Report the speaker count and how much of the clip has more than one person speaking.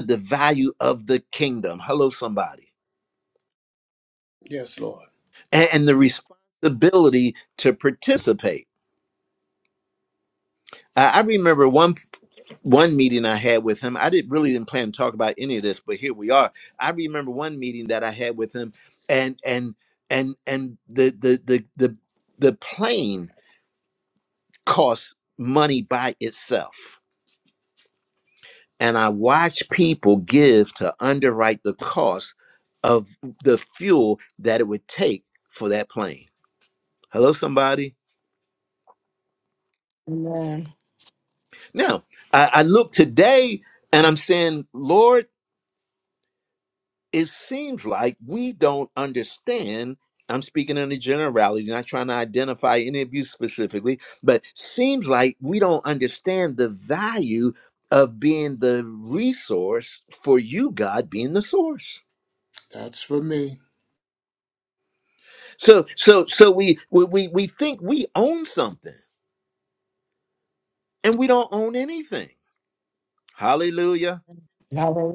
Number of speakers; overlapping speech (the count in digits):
3, no overlap